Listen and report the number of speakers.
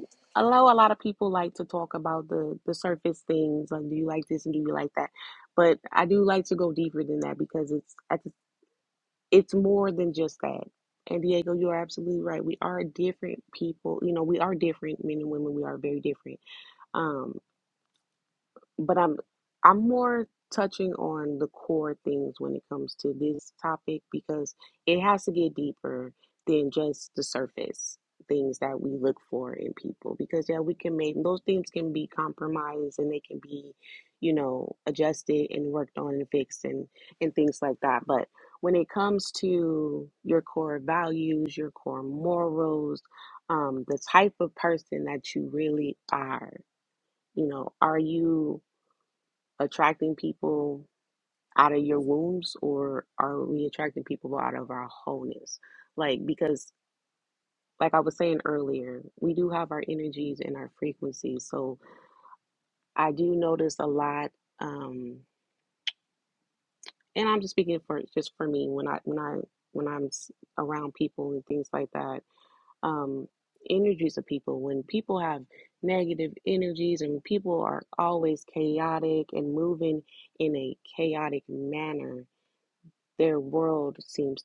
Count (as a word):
one